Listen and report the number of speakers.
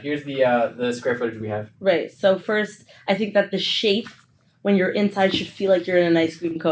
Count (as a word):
two